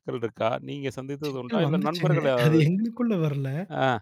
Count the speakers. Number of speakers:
2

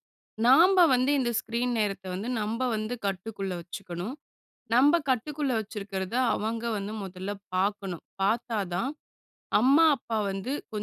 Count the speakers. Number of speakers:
1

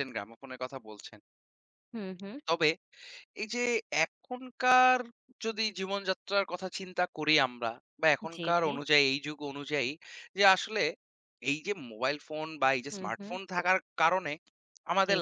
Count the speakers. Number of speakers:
2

